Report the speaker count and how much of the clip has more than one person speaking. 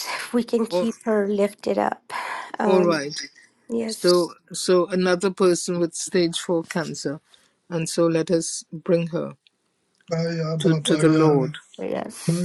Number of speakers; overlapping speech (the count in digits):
3, about 14%